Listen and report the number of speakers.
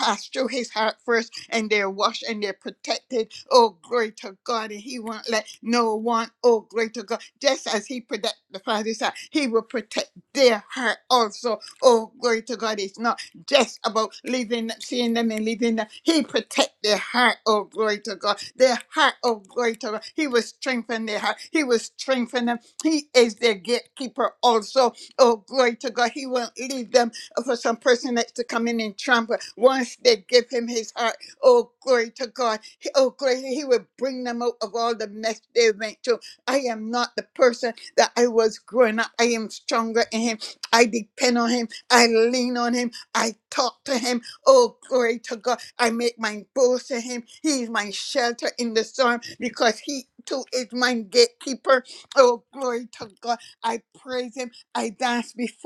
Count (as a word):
one